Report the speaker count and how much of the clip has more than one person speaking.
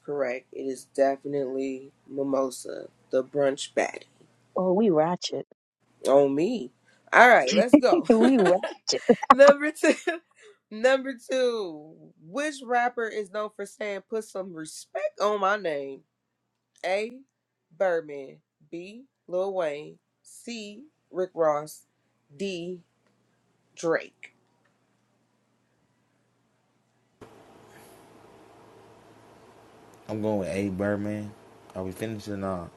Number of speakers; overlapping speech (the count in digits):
3, about 1%